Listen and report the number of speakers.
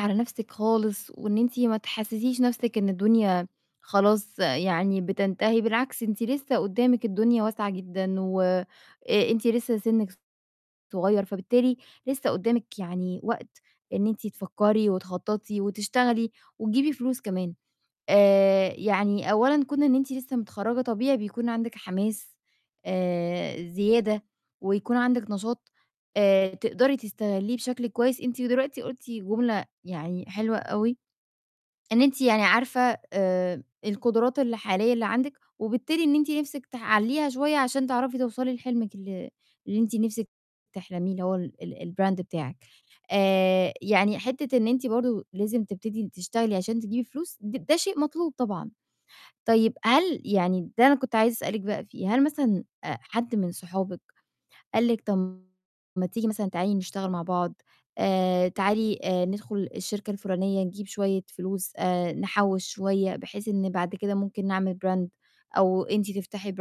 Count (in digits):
1